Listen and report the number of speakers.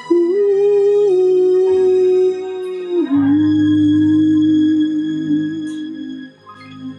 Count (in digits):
1